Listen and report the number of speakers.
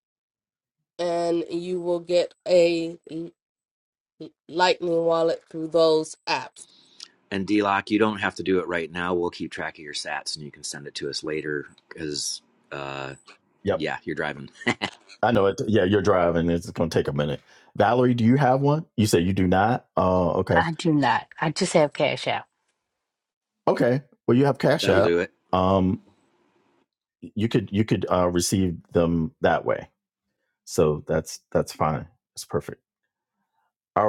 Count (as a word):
four